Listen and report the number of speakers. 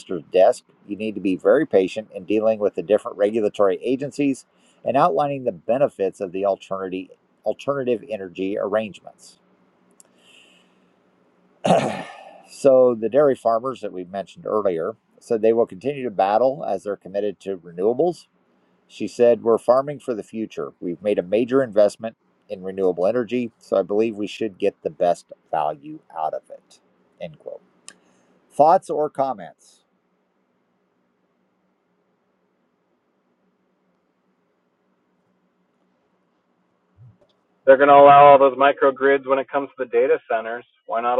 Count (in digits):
2